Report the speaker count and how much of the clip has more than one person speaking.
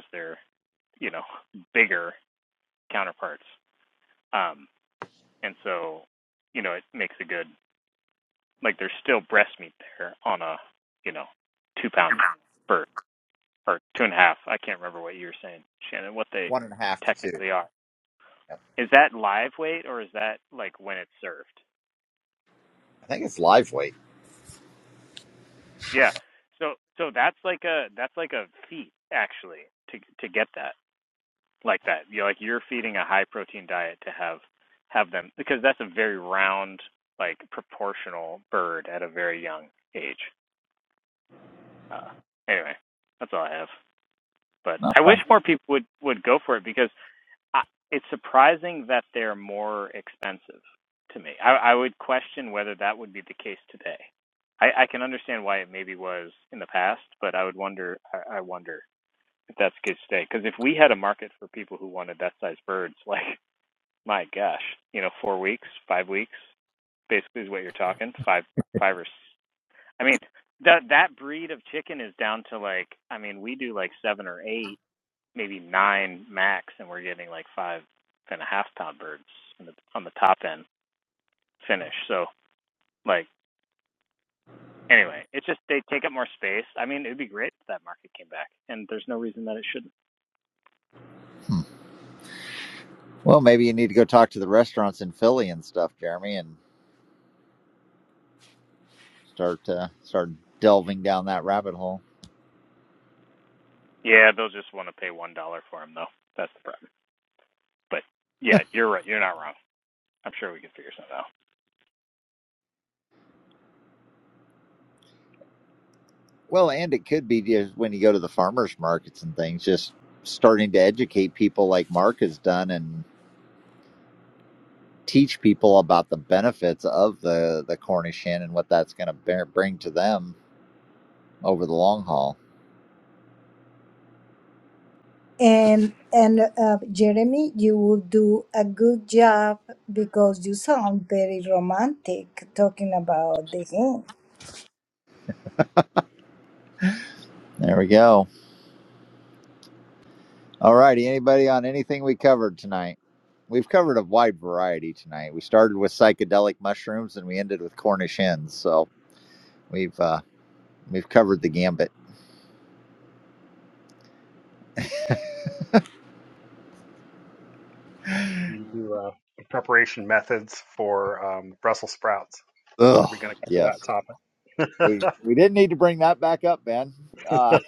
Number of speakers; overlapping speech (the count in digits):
4, about 1%